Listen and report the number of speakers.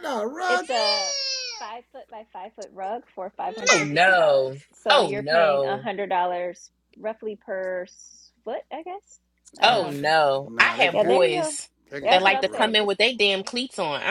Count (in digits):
3